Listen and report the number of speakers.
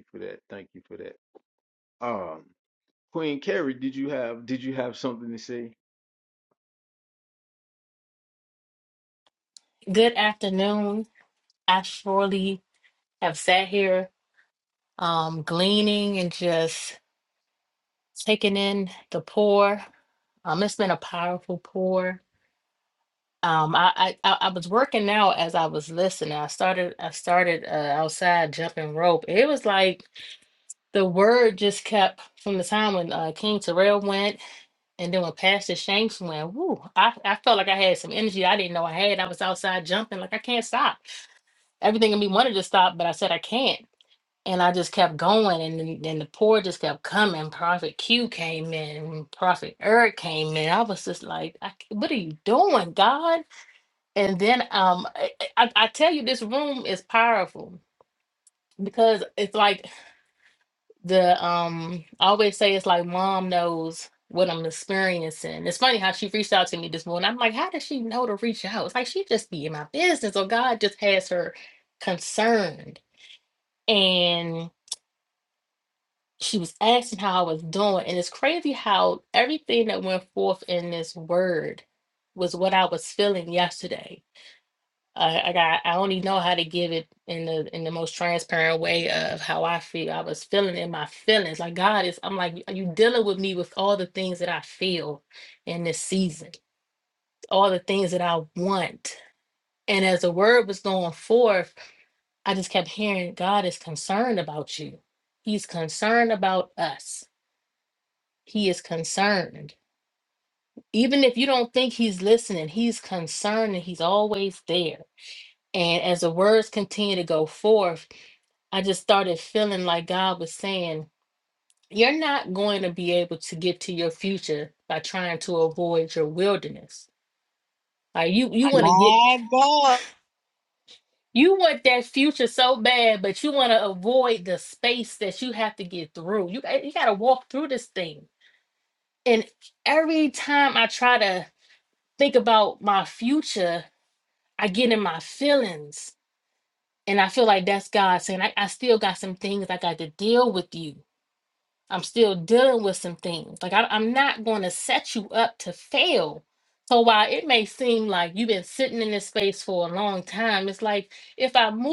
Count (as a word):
three